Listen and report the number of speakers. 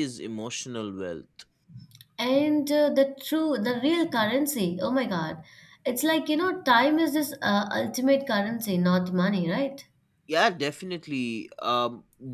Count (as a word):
two